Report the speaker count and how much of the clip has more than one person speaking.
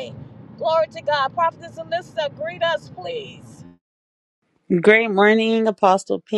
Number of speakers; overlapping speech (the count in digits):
2, no overlap